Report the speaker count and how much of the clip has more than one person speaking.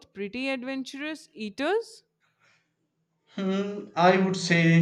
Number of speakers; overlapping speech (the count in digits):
2, no overlap